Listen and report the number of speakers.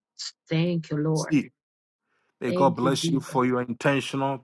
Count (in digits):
2